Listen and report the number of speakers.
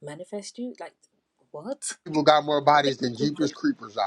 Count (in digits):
2